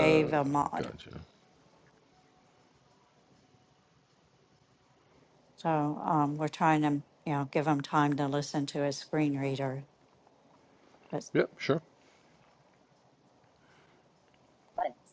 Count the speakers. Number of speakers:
two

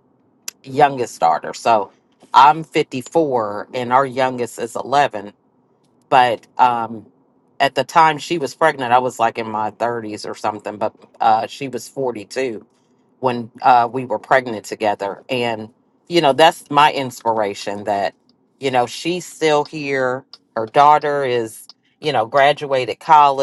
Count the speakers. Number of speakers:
one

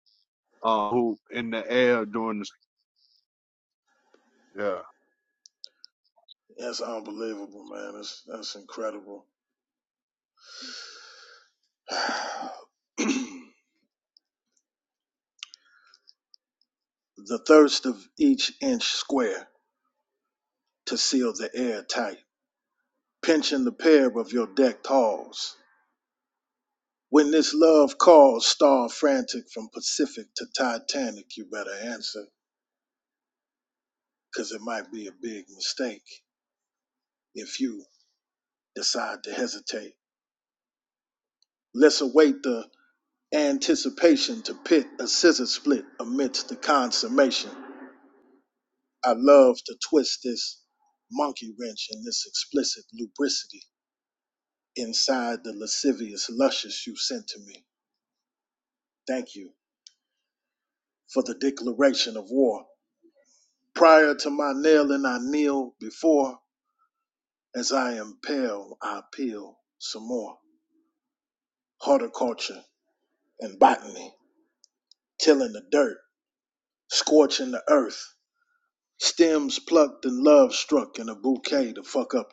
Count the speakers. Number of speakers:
two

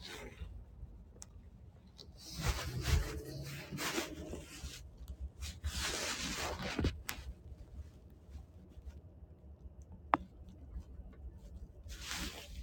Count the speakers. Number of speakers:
zero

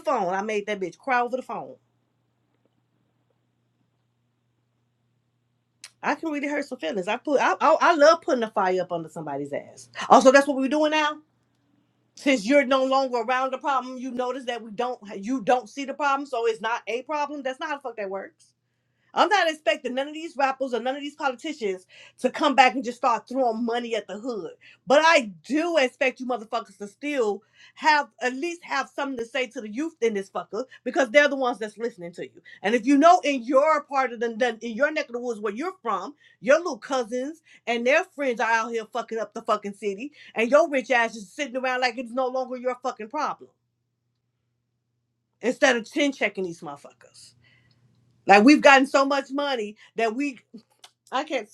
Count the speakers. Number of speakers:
one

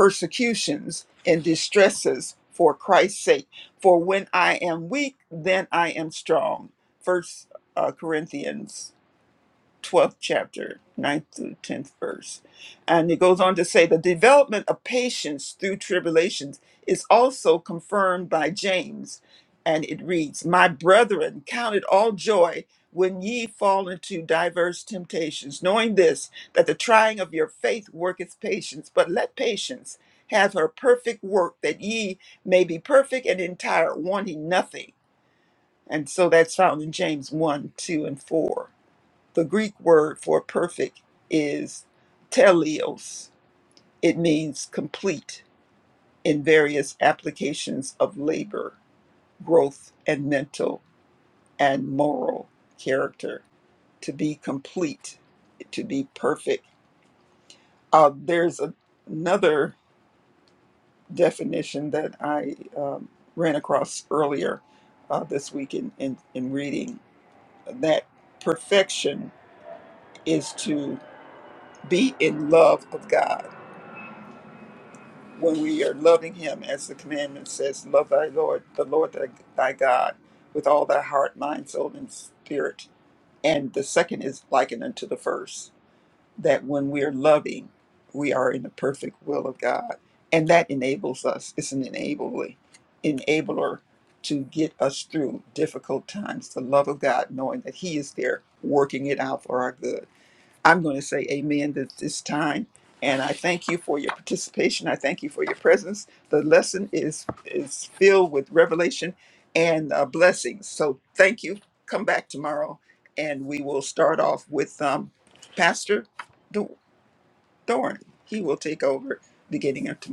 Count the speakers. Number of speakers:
one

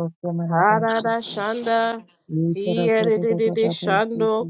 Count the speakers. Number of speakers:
two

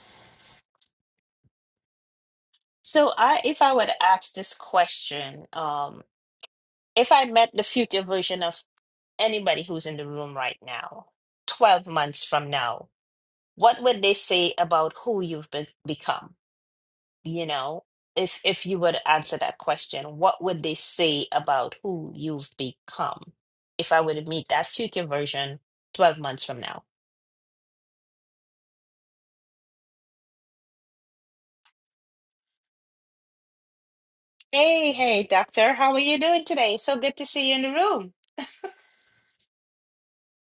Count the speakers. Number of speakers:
one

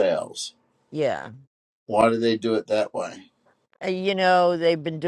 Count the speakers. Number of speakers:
two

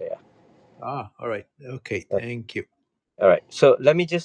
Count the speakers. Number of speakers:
two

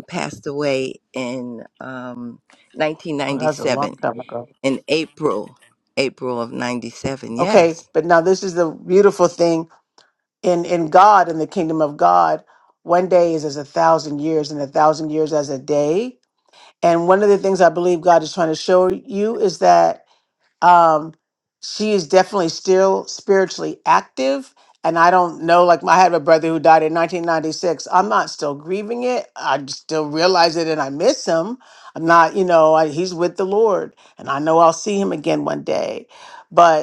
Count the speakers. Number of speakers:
two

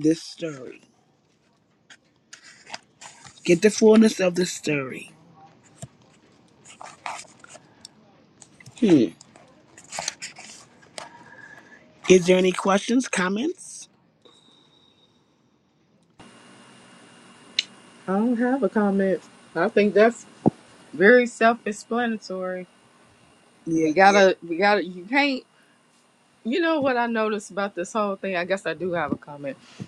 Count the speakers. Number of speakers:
two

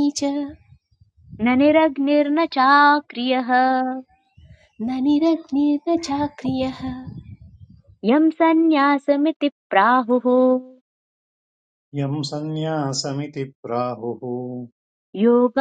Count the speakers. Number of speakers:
three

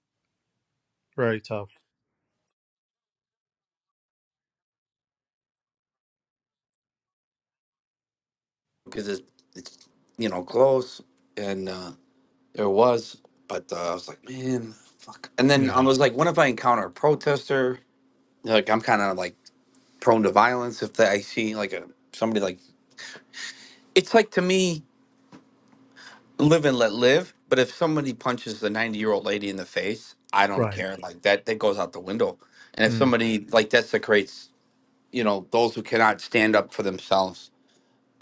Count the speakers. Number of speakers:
two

